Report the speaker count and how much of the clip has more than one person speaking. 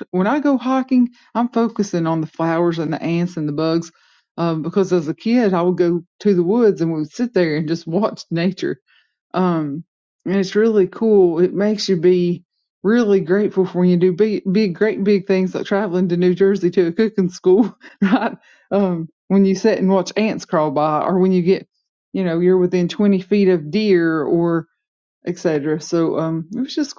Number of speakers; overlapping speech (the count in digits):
1, no overlap